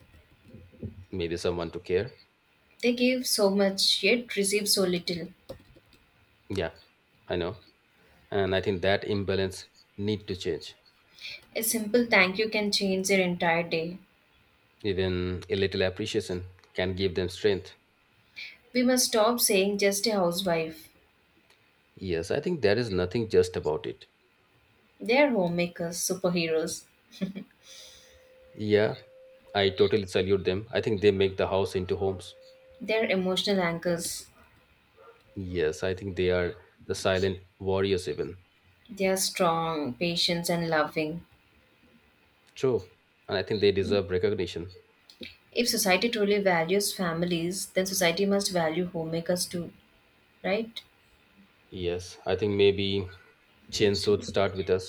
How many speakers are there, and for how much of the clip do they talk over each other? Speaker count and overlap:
2, no overlap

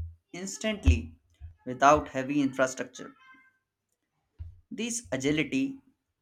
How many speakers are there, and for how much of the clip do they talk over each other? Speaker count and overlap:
1, no overlap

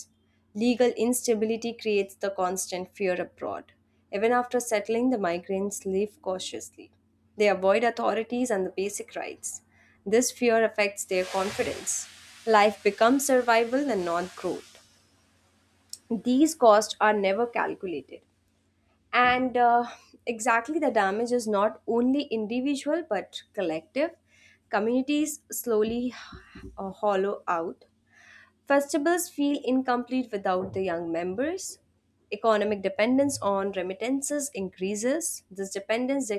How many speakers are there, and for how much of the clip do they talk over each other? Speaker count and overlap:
1, no overlap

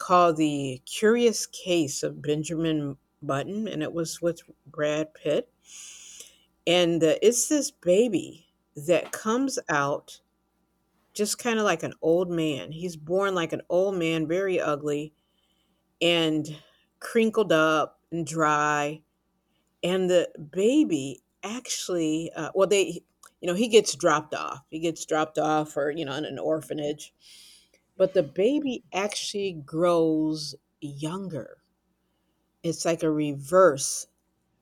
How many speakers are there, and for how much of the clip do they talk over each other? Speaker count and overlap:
1, no overlap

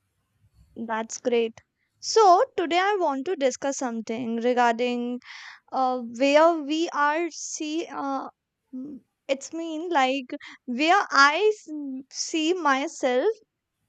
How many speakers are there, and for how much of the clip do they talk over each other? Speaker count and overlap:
1, no overlap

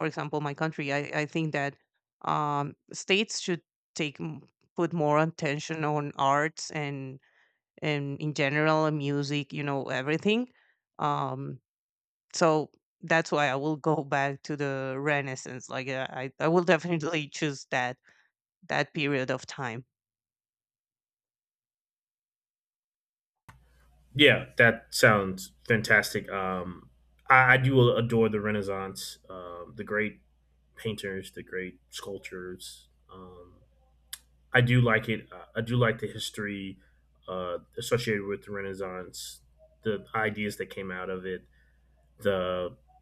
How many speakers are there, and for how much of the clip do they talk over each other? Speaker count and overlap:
2, no overlap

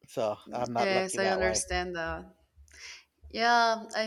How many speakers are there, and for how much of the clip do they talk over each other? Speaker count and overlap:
2, about 21%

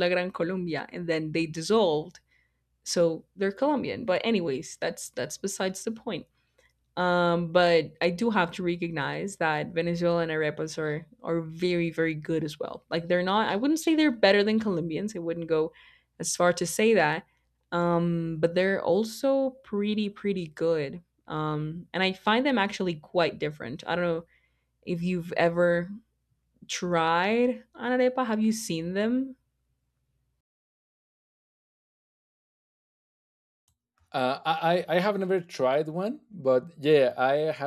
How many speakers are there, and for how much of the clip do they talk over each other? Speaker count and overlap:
2, no overlap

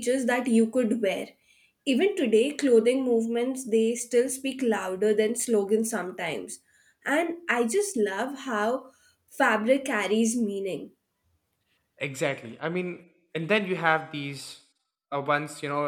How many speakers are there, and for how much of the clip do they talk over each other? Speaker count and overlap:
2, no overlap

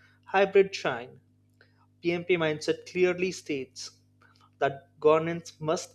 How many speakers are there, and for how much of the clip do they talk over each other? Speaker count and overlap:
1, no overlap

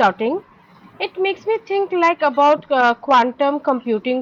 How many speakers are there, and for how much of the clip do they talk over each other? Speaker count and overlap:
1, no overlap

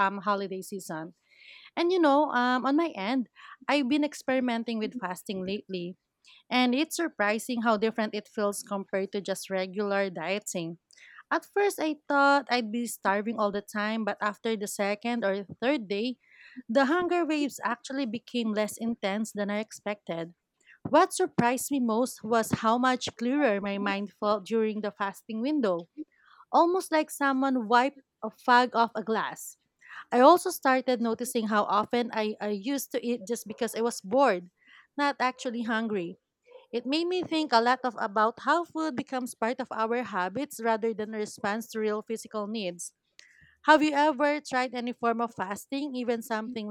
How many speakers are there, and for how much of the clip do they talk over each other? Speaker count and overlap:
1, no overlap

